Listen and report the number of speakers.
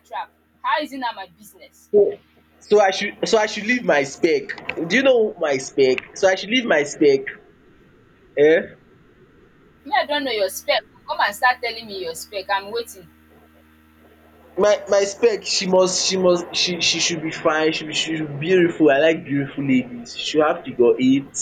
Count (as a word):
two